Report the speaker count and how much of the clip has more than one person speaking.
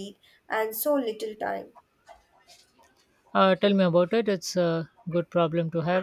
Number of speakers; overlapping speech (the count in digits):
2, no overlap